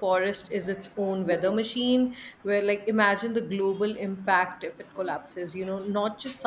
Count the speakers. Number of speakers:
1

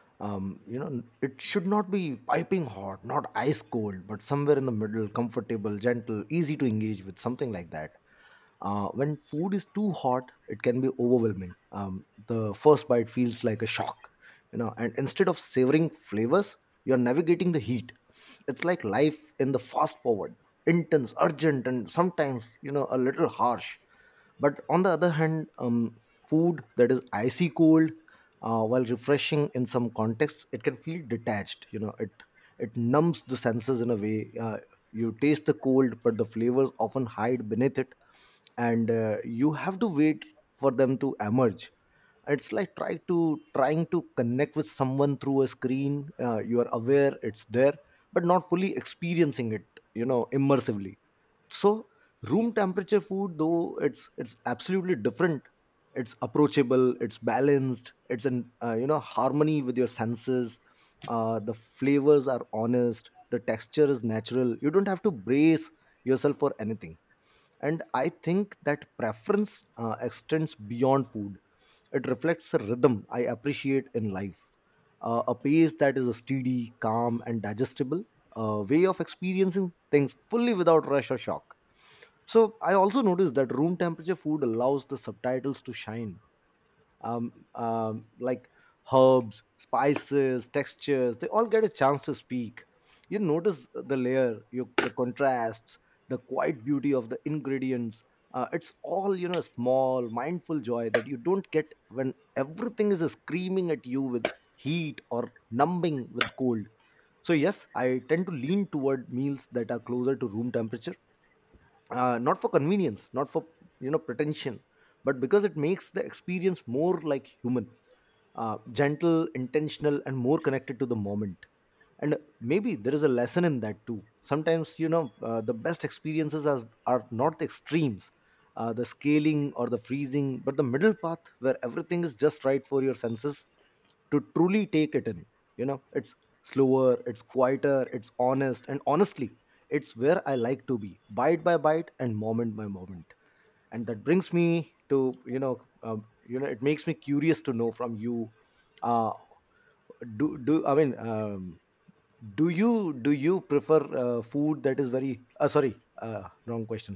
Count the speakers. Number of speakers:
1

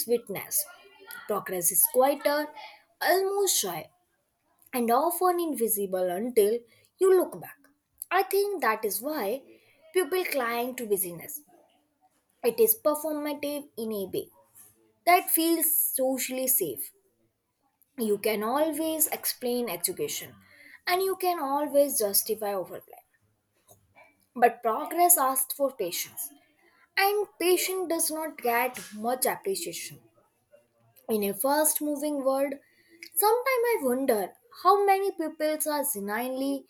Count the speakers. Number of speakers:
1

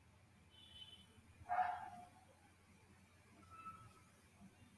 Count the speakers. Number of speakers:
0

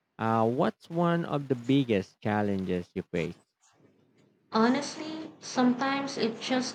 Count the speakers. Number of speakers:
2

